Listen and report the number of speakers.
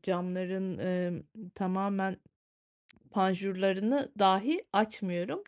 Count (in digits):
1